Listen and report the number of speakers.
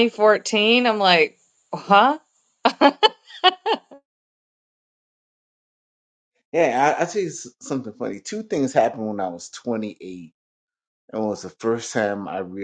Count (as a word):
two